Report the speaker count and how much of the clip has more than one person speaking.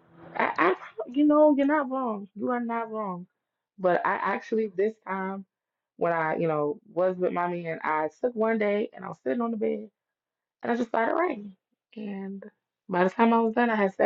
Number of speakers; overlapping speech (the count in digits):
1, no overlap